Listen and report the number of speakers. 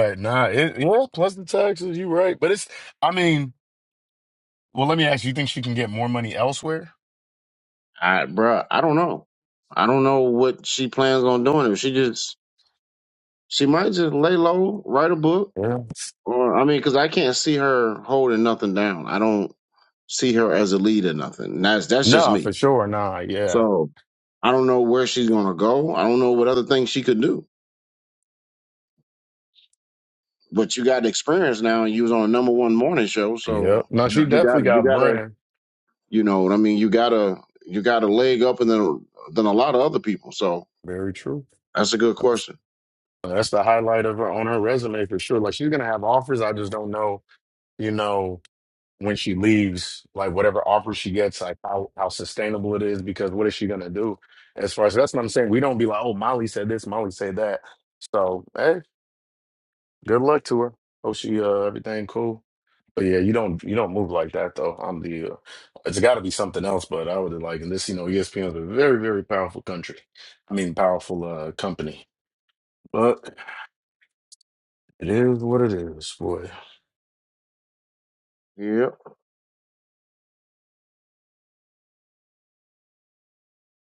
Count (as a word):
two